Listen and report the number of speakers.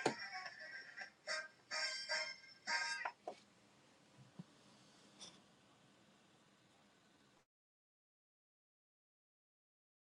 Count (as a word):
zero